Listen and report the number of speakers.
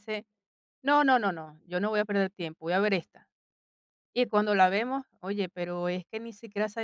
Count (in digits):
1